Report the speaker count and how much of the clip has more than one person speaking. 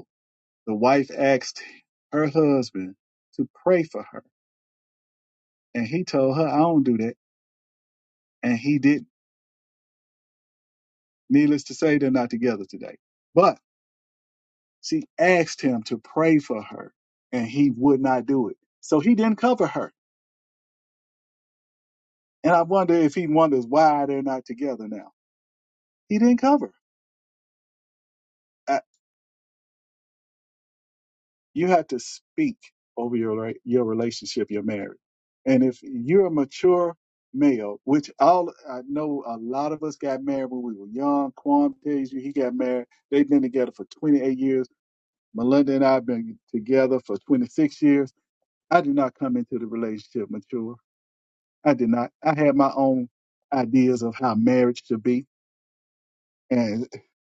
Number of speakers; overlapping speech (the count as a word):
one, no overlap